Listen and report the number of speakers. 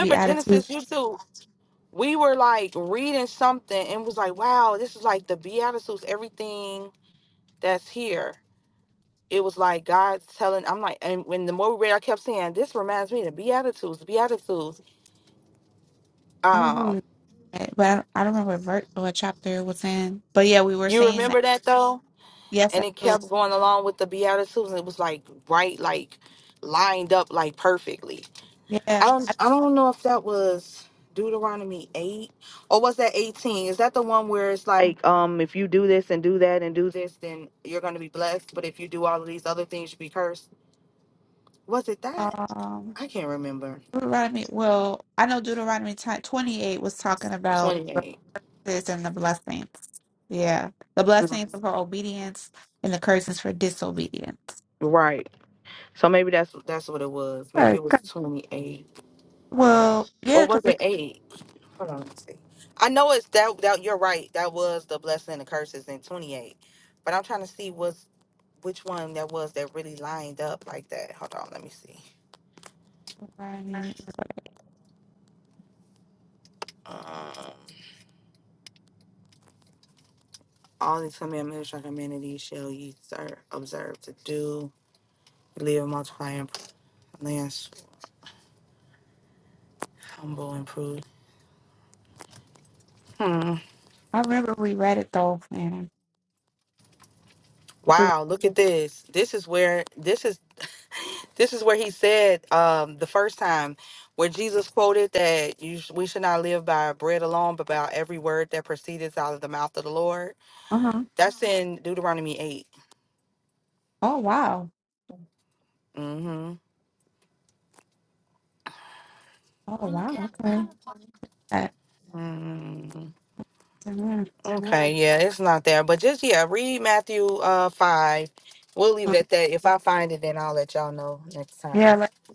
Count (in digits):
2